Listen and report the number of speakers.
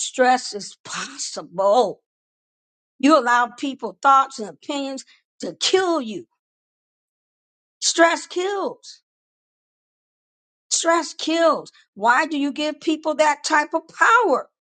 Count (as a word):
one